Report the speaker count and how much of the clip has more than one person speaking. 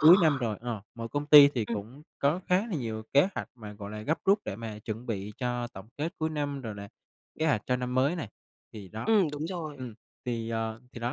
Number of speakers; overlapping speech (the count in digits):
2, about 3%